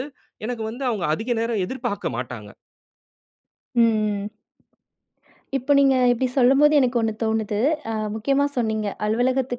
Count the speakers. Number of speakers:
2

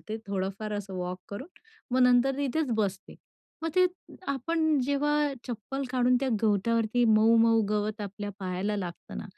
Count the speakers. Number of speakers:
1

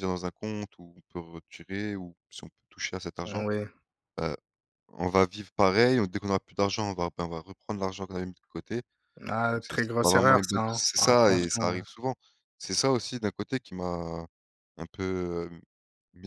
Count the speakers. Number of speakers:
2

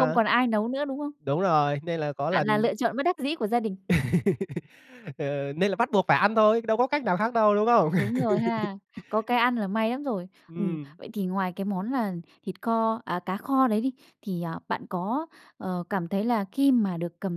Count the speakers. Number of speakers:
2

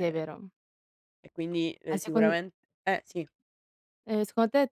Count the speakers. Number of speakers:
2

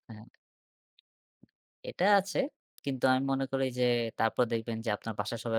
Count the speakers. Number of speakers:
1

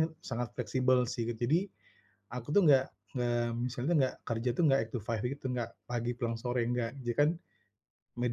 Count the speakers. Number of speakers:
1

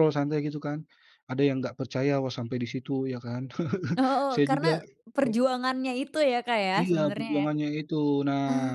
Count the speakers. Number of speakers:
2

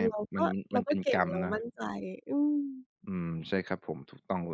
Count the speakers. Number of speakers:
2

